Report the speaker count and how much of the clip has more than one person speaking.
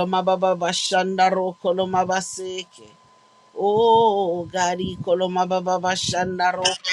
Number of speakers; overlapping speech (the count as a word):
one, no overlap